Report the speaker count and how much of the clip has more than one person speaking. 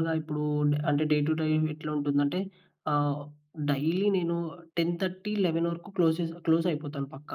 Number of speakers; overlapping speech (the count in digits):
1, no overlap